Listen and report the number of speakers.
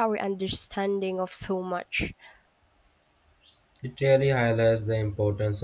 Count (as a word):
two